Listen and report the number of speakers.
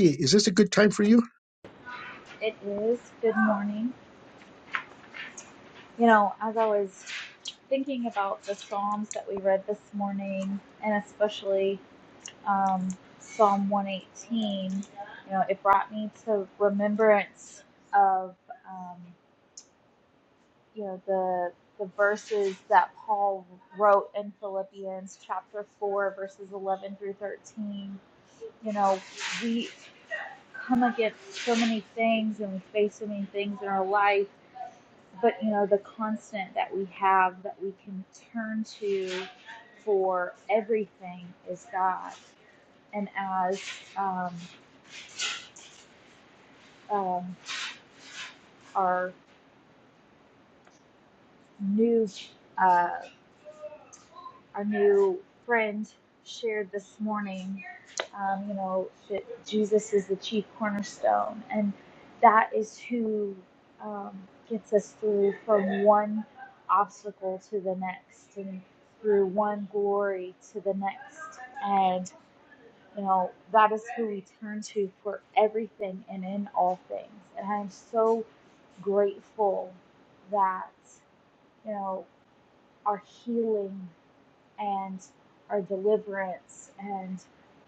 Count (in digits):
2